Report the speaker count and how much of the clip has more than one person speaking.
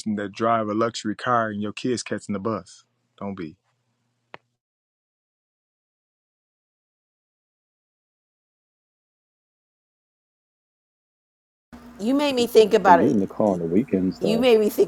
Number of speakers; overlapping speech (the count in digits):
3, about 4%